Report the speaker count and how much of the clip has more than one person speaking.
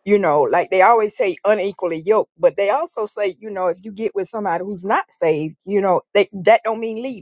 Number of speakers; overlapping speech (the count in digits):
1, no overlap